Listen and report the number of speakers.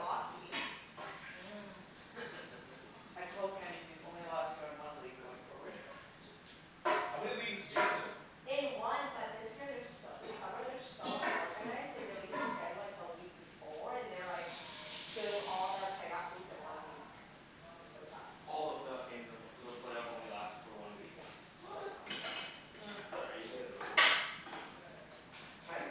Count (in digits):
4